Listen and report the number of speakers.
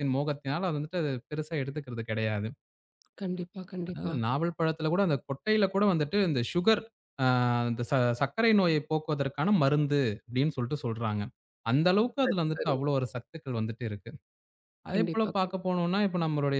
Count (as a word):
two